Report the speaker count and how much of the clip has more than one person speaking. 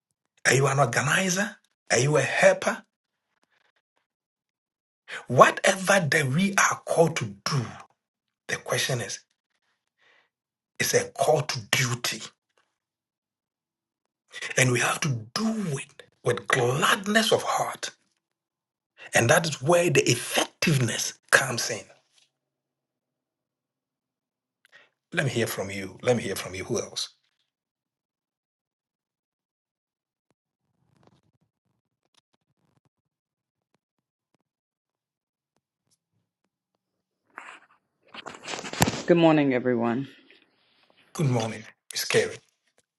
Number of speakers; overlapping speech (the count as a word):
two, no overlap